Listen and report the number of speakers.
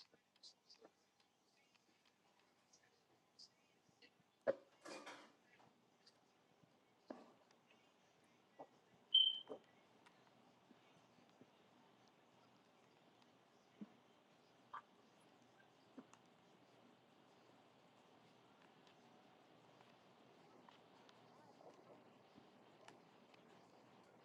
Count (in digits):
0